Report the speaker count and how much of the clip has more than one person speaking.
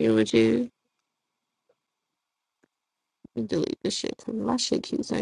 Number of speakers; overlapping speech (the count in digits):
1, no overlap